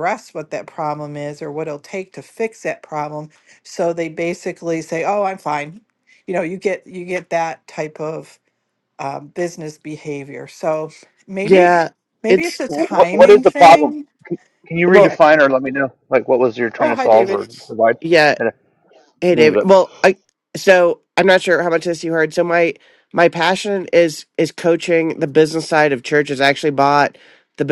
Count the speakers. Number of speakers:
three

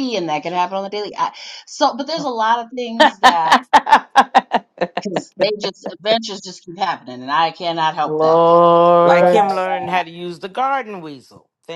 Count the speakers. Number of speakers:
three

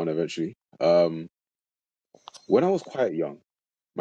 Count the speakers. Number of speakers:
one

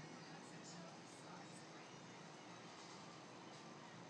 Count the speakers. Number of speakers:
zero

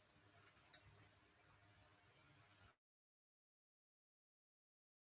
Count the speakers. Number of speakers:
zero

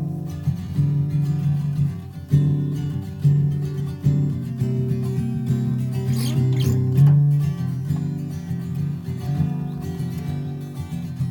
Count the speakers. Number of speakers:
zero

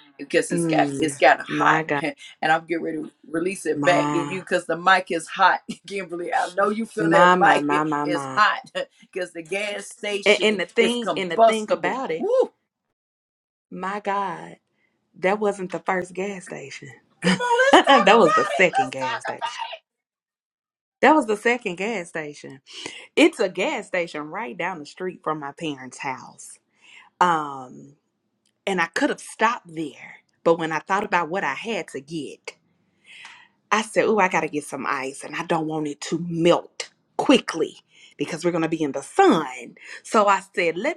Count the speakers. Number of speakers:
two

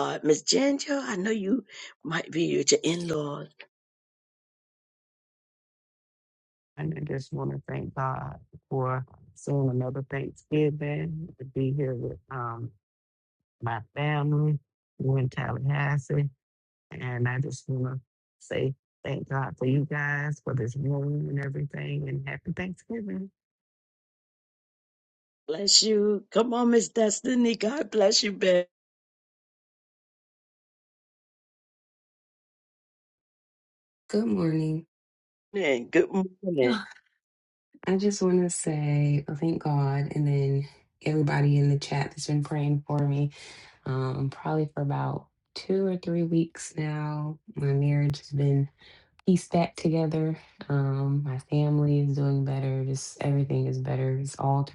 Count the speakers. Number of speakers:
three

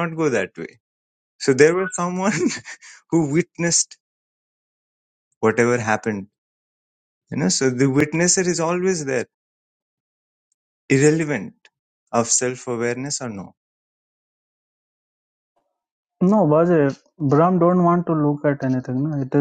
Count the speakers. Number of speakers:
two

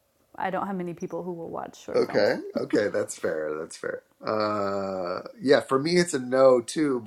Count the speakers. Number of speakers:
two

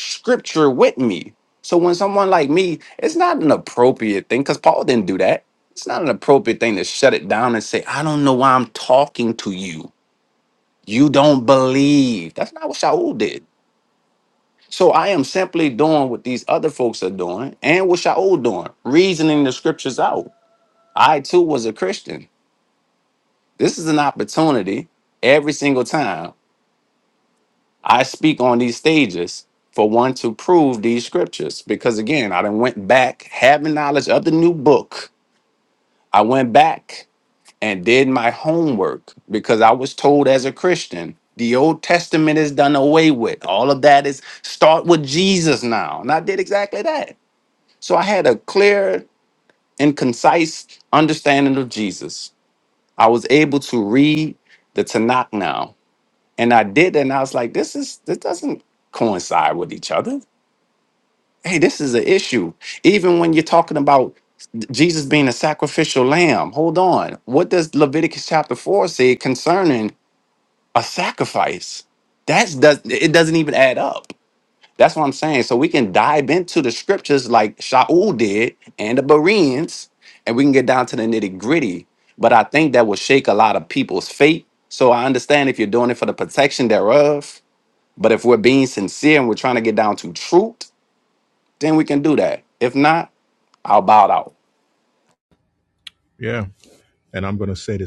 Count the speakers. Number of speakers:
two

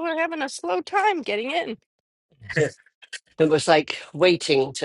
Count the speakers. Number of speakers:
two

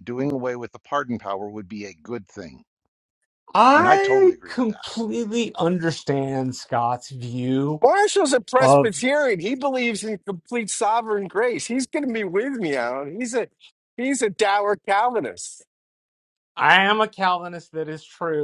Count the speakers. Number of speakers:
three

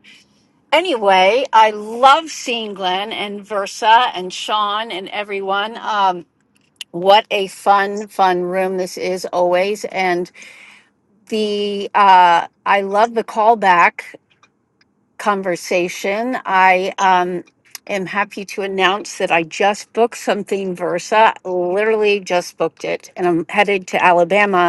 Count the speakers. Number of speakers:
one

